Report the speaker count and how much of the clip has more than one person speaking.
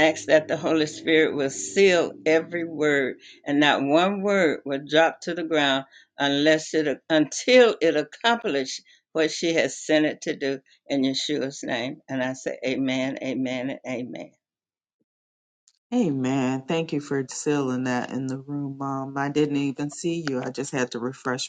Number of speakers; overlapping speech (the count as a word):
two, no overlap